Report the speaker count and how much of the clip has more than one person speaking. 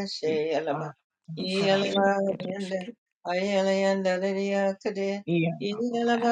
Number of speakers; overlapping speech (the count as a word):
three, about 33%